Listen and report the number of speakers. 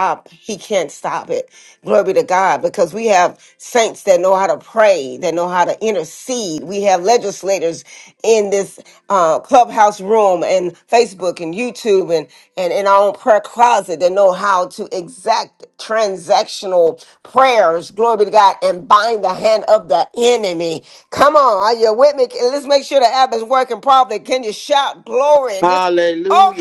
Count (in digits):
2